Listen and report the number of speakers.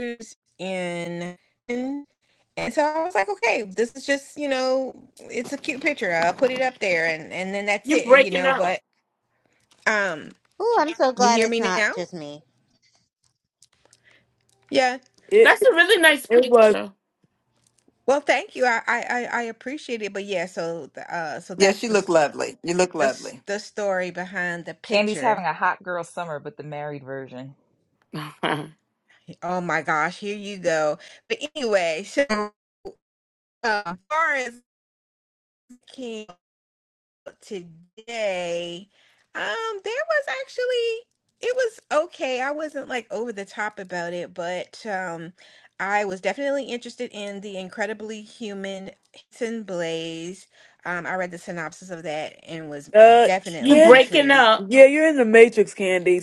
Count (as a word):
six